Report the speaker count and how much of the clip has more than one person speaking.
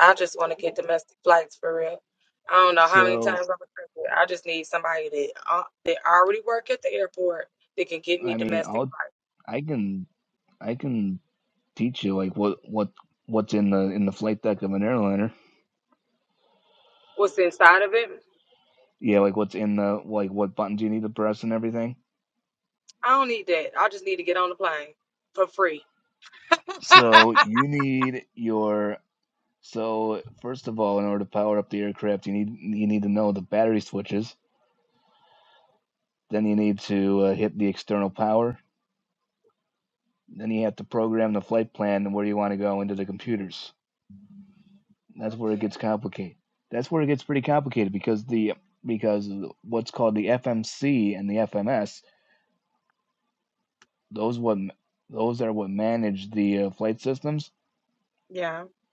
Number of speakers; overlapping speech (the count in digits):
2, about 2%